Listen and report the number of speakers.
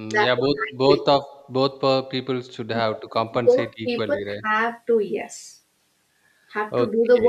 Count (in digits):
2